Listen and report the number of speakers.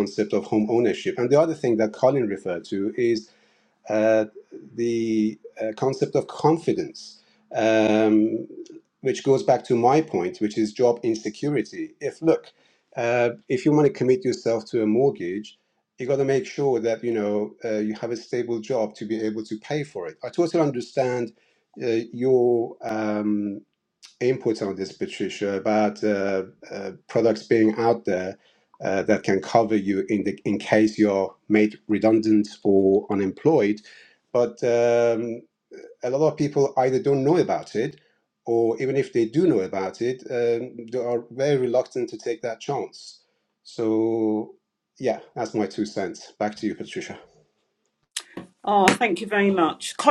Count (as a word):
two